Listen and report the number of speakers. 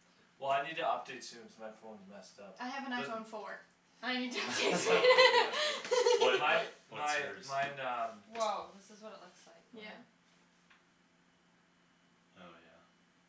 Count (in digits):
4